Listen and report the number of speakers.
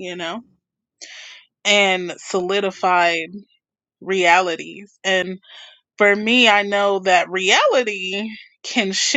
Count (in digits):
1